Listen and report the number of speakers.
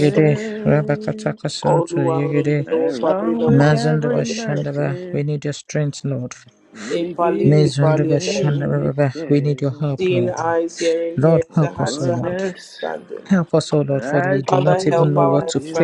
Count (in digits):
3